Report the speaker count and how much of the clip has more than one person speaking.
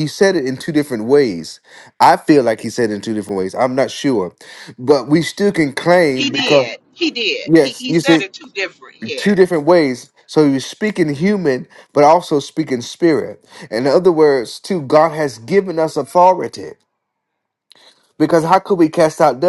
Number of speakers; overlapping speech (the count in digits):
2, about 7%